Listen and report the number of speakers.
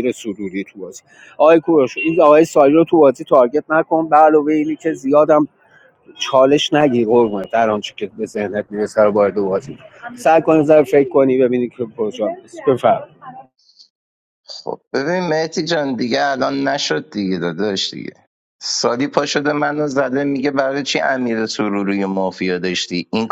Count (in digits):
2